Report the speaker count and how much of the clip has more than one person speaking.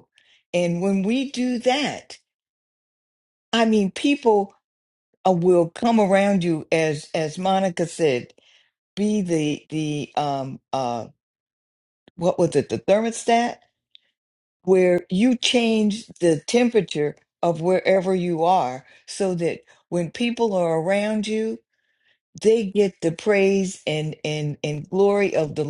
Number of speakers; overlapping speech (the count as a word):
one, no overlap